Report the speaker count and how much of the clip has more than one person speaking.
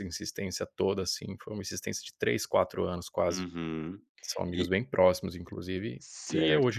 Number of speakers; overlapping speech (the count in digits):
2, about 11%